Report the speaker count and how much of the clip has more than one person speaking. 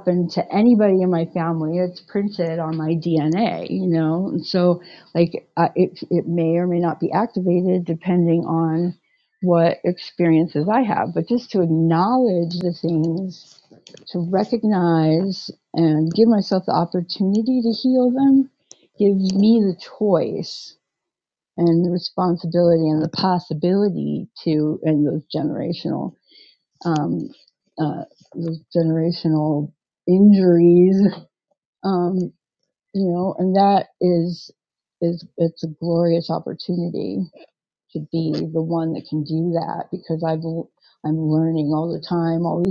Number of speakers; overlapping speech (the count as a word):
one, no overlap